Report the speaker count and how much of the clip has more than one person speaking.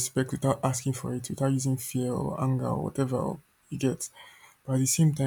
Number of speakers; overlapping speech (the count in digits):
1, no overlap